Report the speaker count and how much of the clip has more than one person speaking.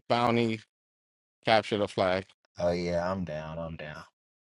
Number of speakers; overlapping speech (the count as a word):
two, no overlap